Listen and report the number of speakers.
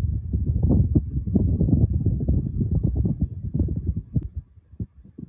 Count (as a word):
zero